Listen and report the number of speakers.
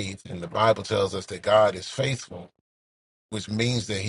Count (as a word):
one